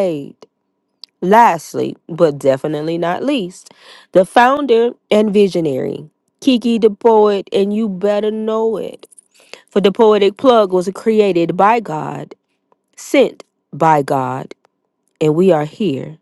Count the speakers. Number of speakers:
one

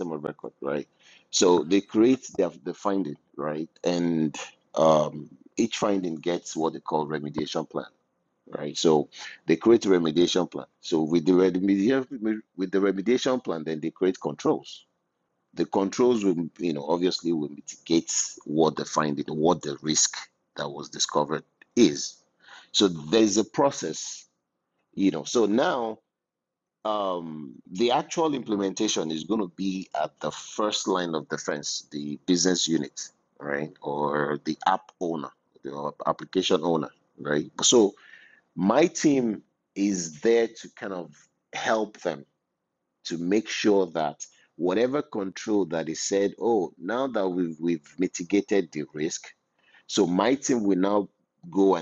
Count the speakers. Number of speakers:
one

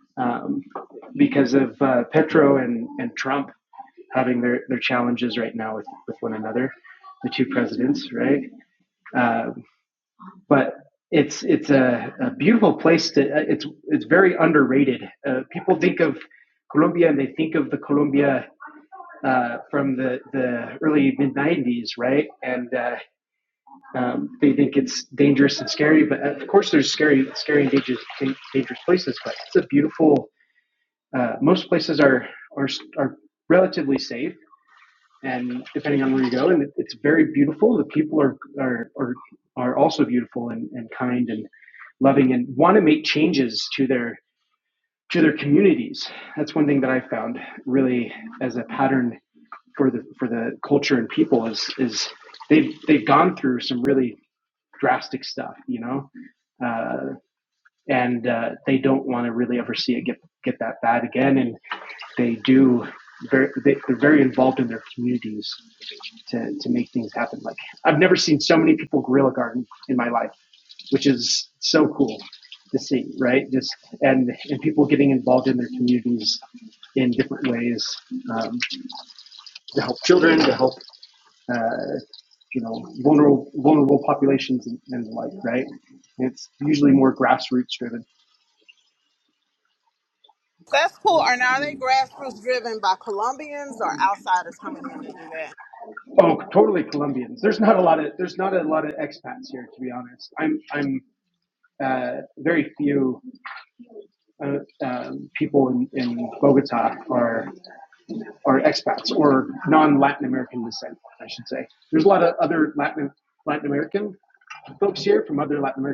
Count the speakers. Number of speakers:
two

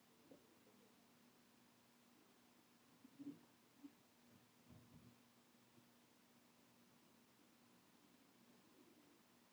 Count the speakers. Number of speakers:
zero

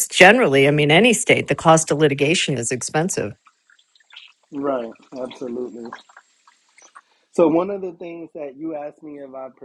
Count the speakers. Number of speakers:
two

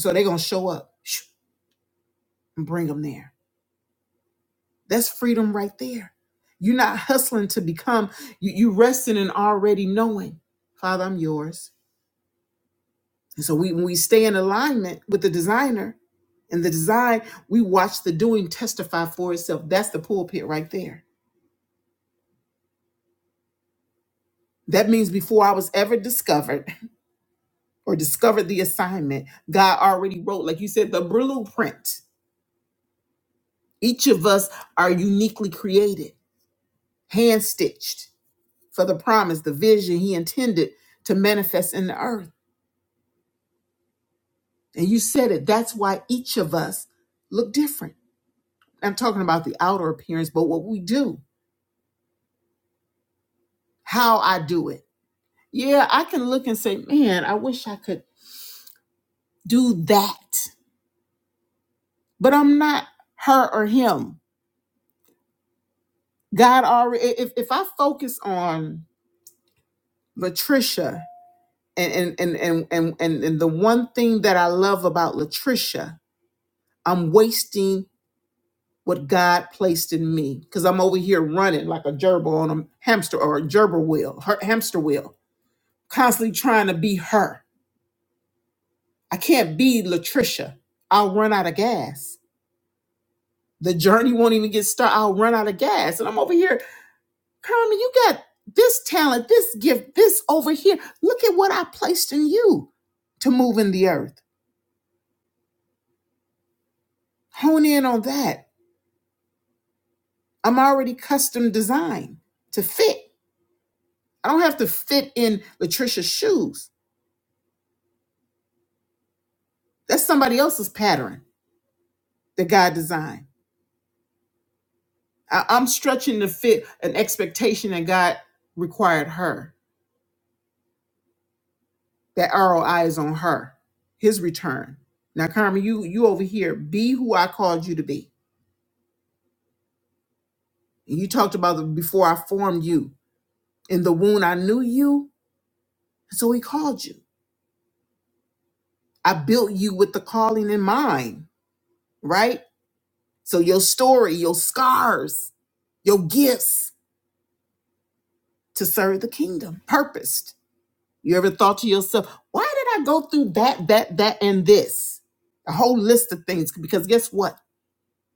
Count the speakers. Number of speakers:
one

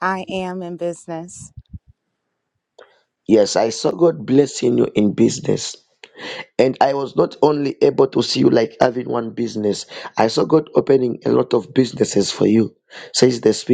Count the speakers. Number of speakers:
two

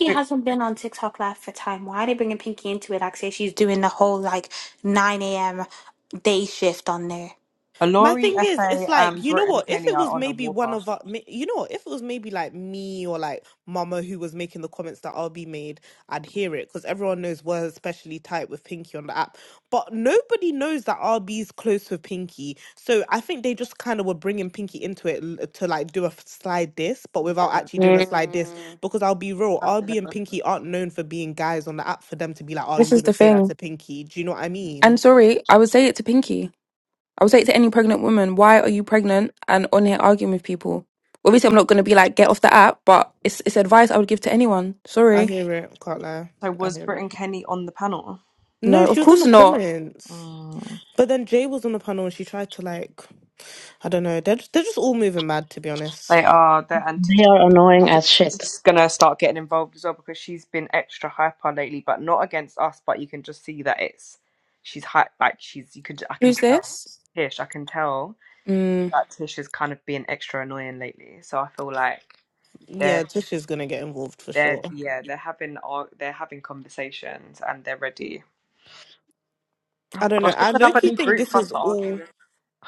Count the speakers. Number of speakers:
five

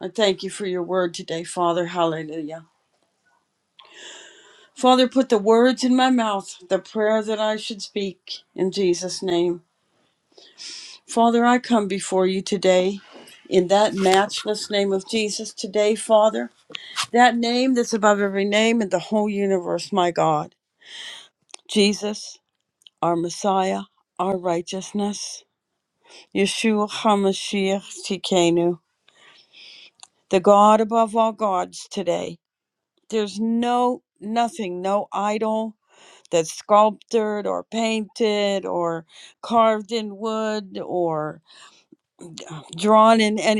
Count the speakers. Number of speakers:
one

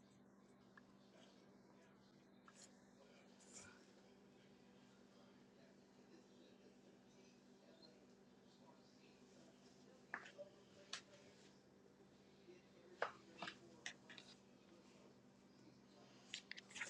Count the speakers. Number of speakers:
zero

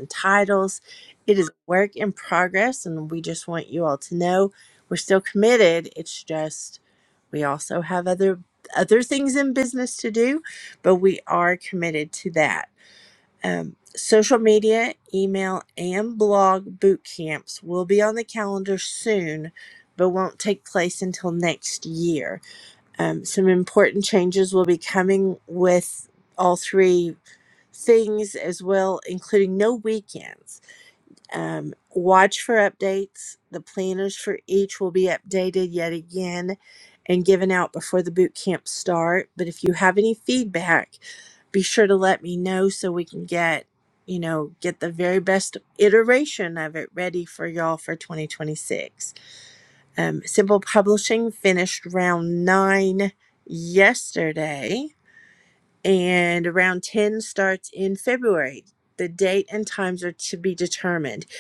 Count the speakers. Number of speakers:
one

